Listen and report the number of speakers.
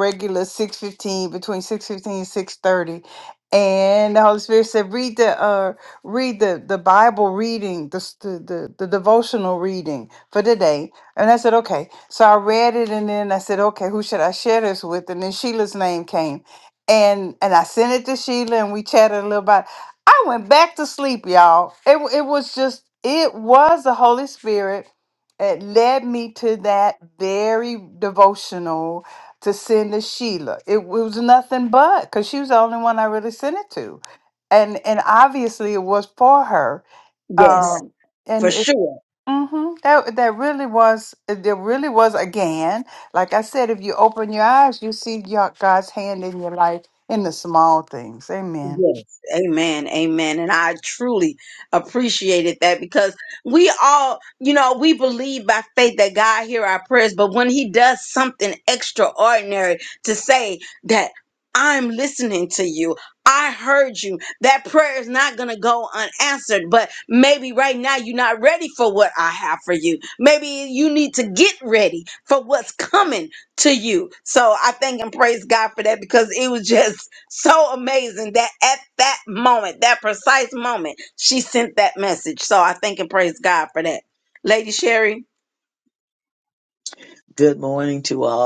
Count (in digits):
3